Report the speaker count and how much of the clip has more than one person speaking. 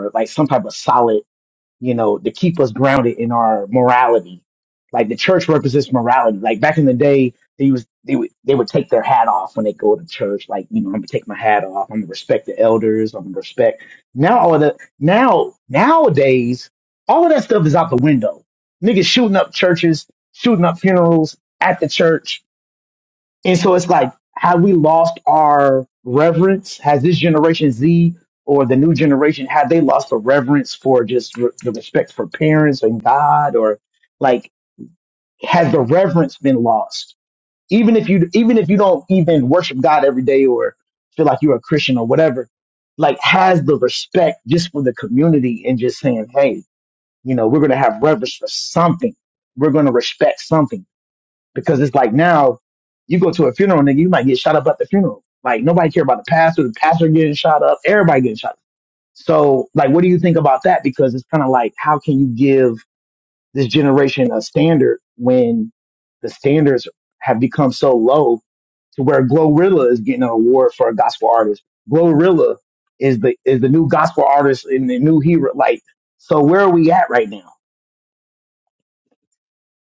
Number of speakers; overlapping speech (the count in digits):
1, no overlap